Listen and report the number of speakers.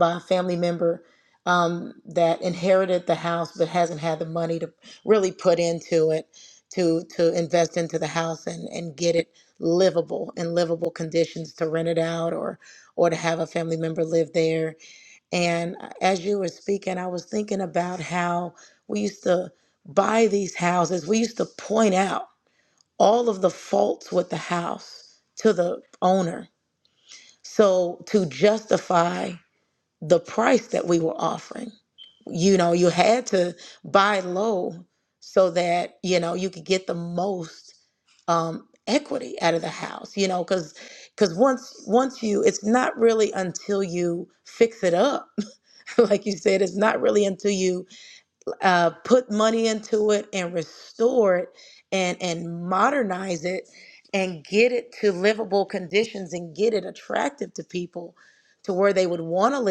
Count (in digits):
1